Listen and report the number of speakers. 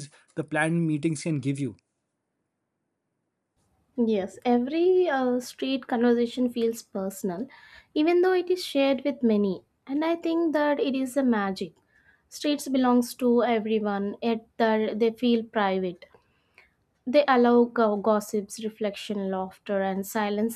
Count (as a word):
two